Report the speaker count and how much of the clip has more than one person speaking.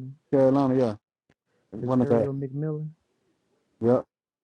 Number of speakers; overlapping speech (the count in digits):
2, about 6%